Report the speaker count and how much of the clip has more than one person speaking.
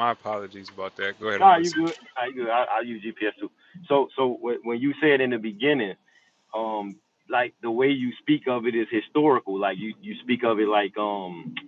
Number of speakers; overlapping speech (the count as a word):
two, about 4%